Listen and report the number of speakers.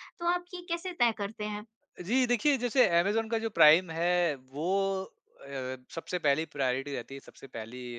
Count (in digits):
2